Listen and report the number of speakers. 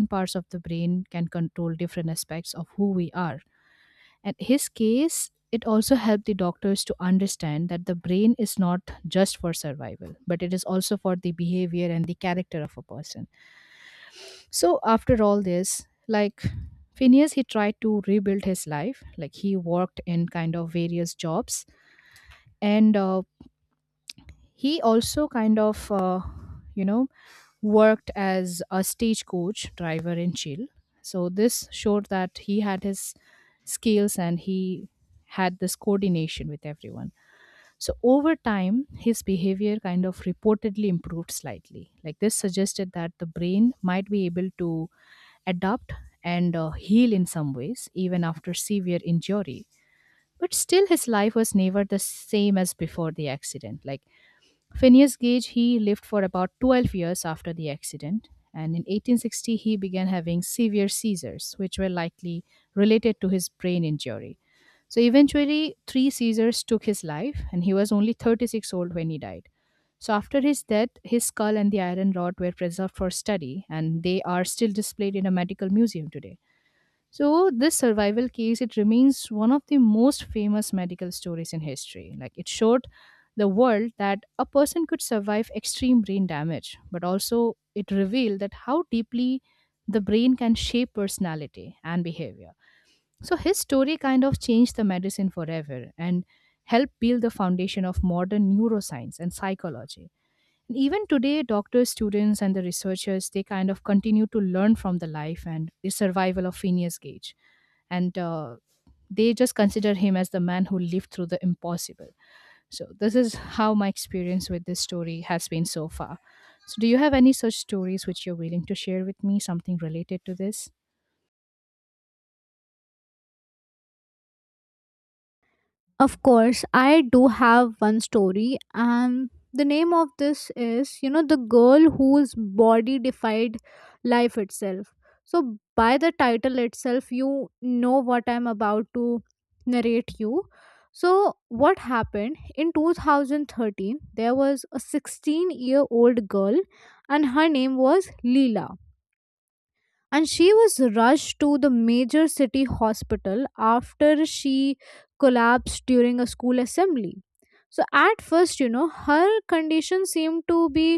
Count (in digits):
2